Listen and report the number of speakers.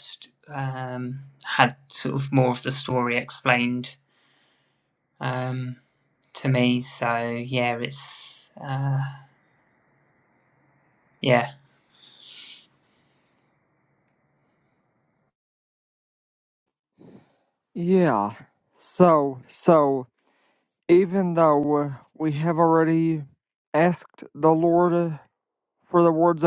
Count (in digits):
2